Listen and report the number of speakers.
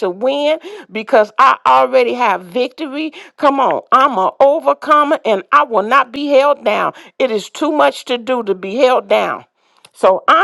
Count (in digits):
1